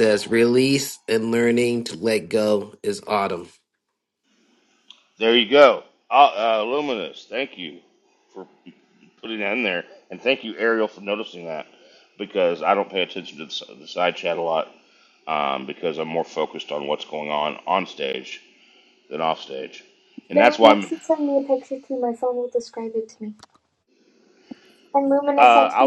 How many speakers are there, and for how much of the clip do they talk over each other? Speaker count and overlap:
three, about 4%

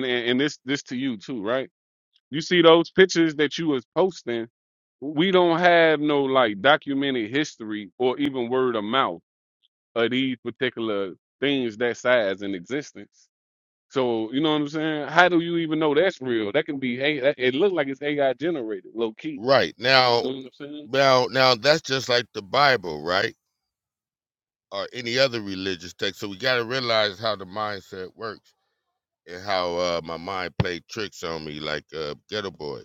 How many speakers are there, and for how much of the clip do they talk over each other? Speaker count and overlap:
two, under 1%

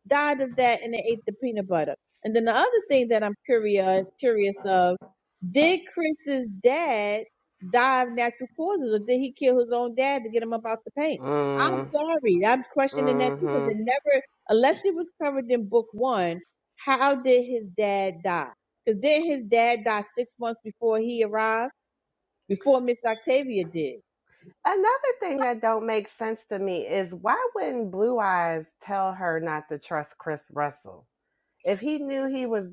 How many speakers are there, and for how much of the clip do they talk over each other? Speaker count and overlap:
two, about 3%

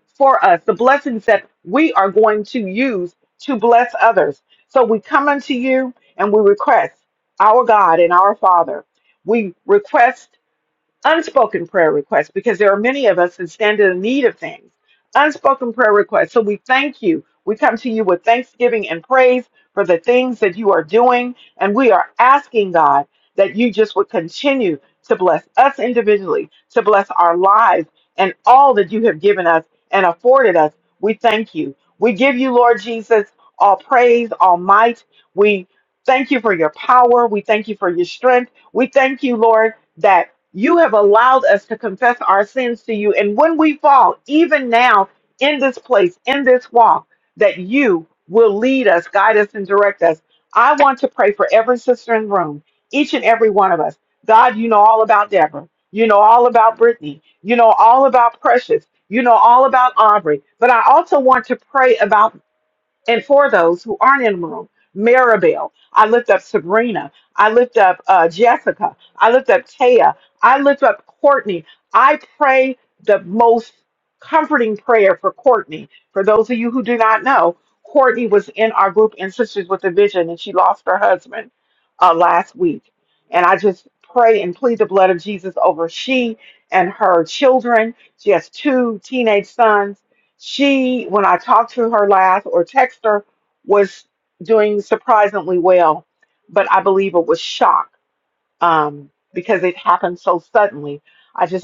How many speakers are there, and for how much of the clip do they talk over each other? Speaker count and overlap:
one, no overlap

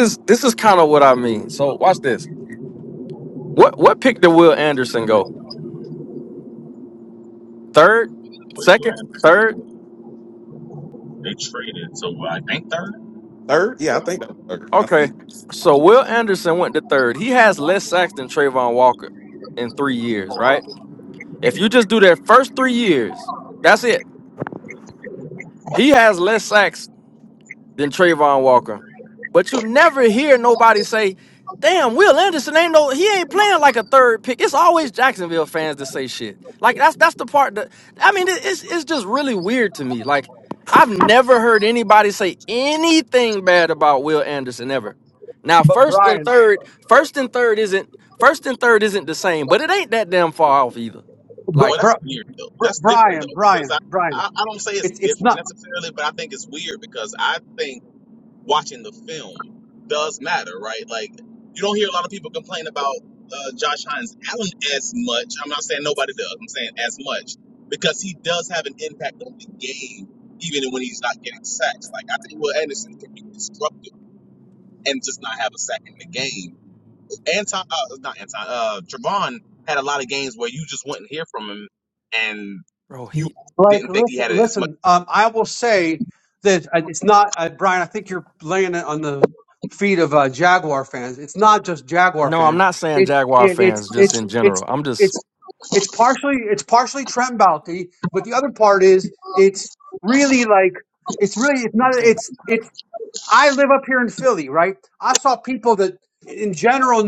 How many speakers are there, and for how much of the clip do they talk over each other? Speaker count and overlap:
four, about 7%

